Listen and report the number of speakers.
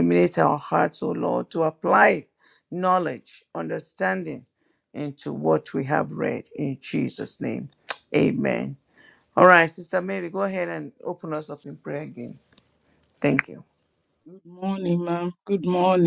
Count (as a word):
two